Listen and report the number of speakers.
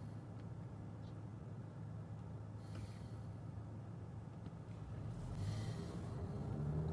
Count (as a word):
zero